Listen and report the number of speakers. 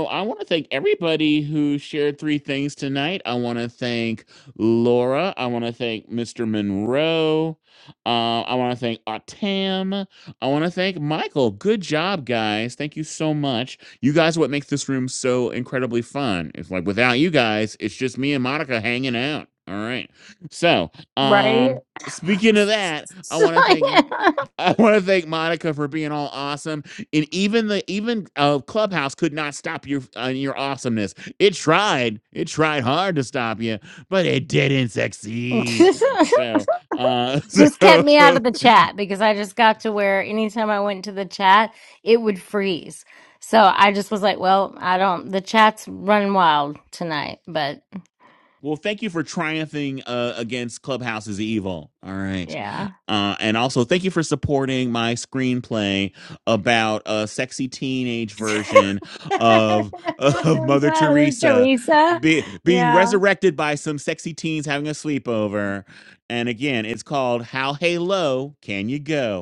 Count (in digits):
2